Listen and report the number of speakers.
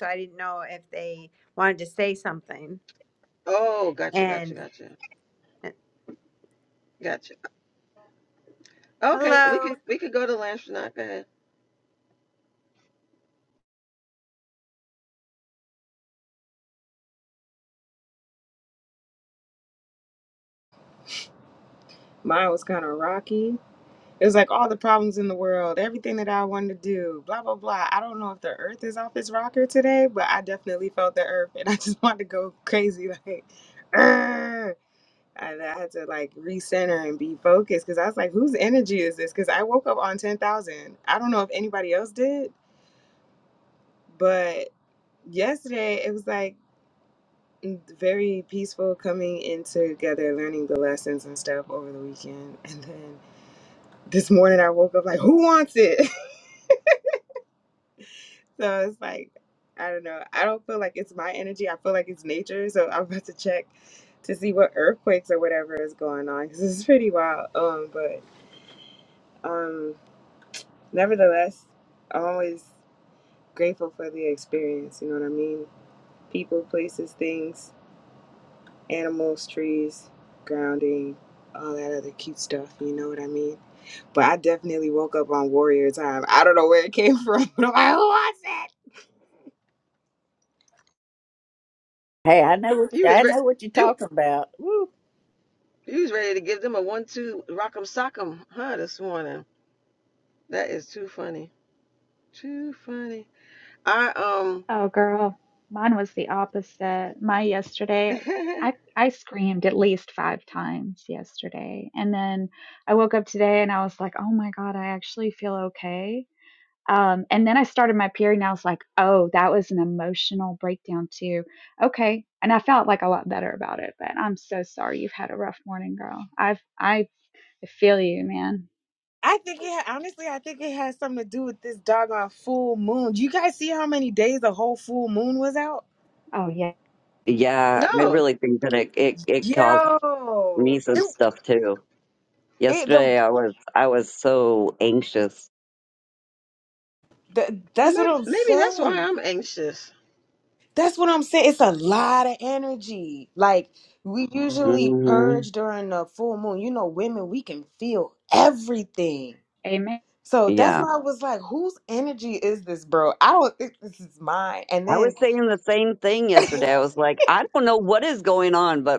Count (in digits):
6